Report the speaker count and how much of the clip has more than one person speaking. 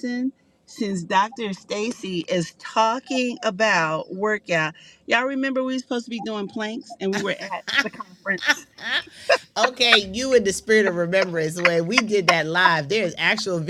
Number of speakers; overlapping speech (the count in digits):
2, no overlap